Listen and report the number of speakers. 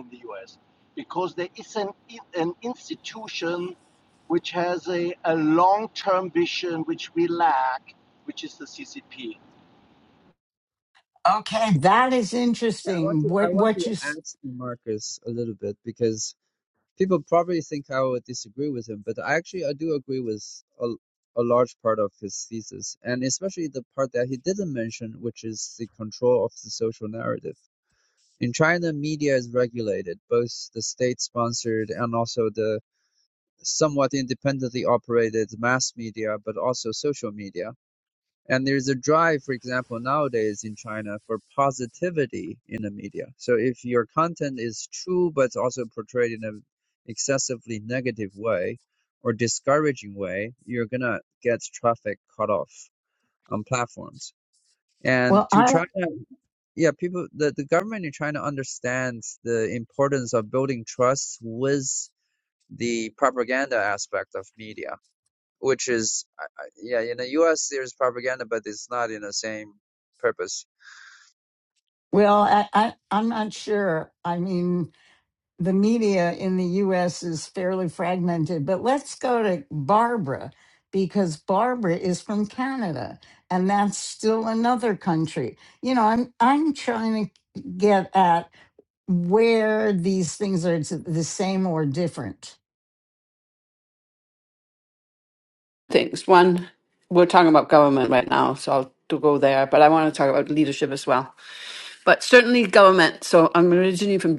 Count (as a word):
four